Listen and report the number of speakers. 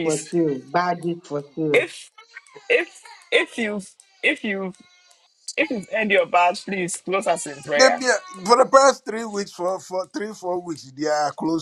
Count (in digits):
3